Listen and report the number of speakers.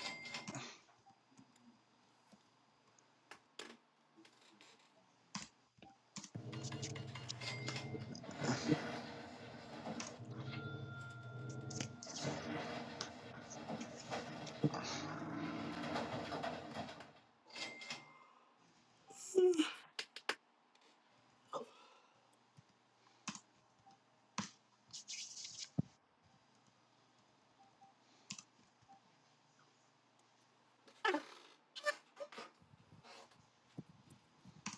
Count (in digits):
0